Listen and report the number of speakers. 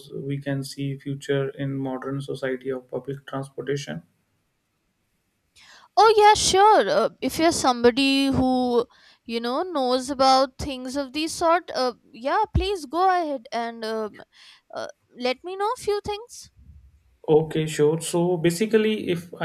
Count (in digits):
2